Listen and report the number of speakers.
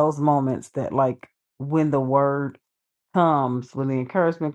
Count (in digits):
1